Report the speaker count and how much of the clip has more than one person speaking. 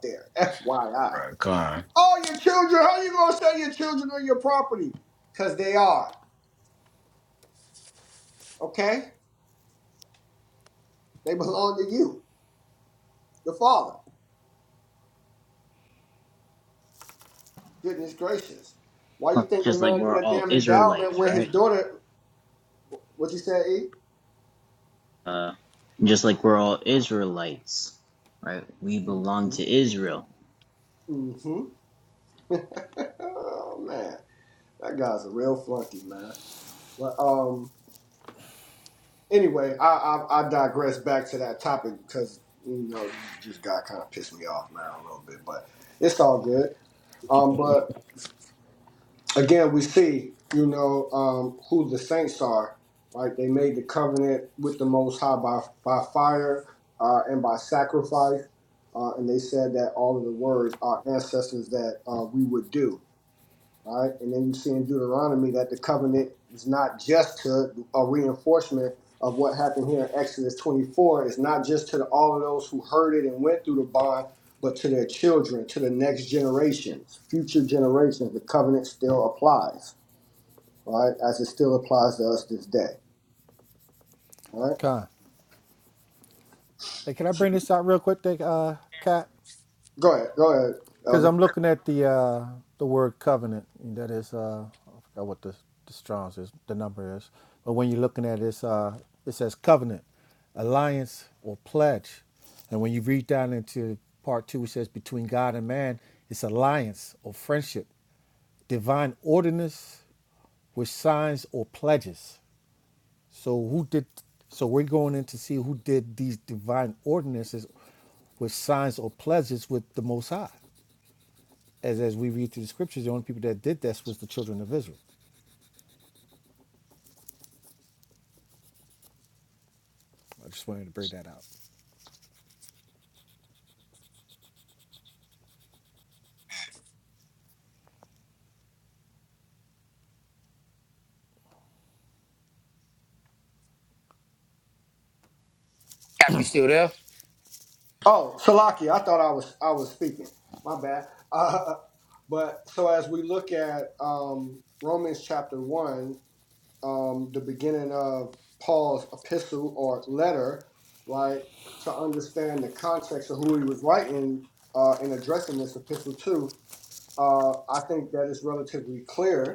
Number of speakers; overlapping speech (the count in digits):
4, about 2%